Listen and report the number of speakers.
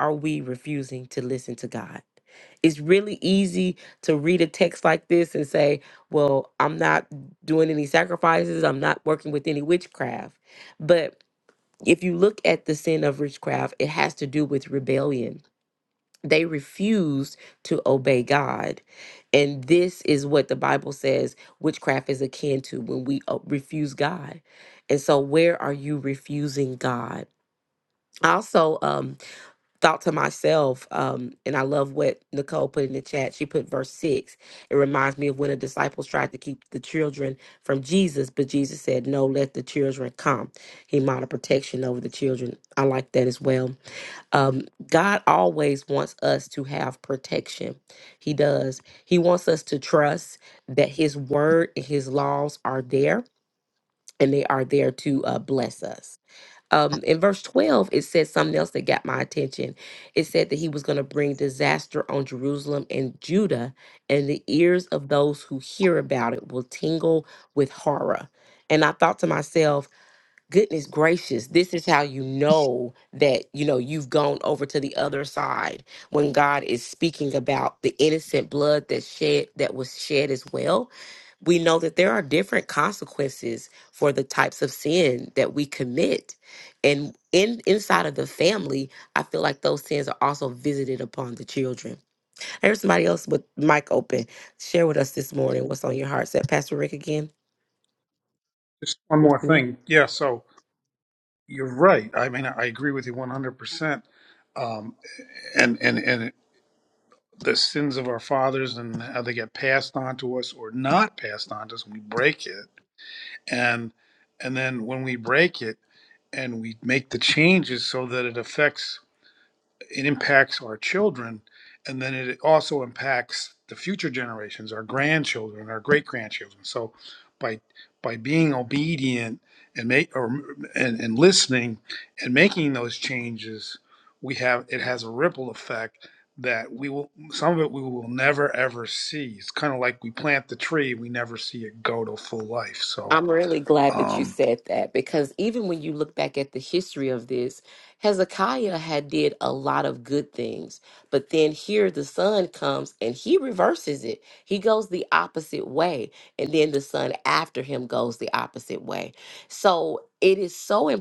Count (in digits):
2